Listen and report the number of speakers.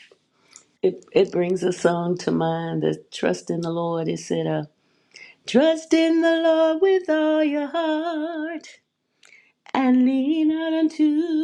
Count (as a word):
one